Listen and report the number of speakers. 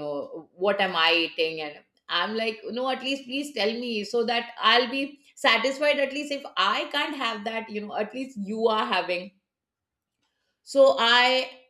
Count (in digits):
1